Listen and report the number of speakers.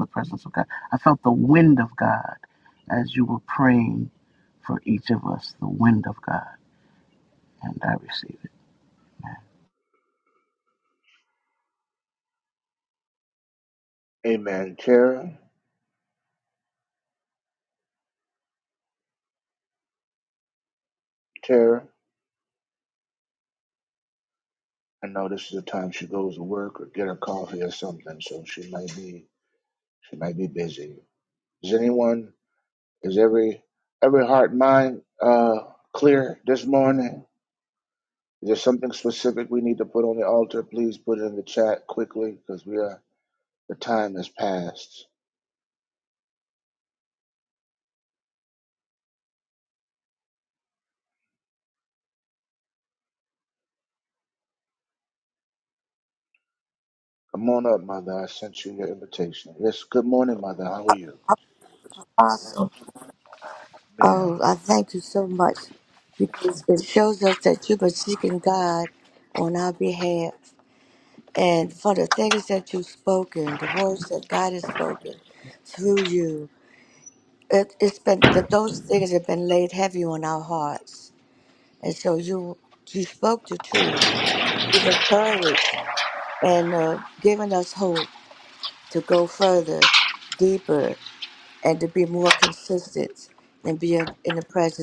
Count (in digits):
3